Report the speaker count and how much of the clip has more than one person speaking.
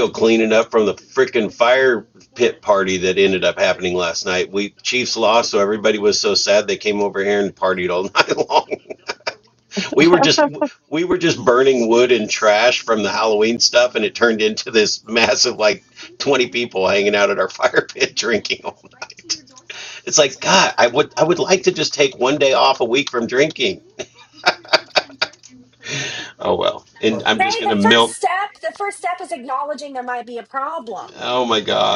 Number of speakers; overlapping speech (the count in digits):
2, about 2%